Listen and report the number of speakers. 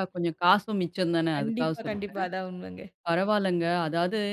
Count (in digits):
2